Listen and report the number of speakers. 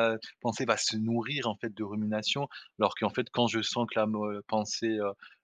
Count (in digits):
1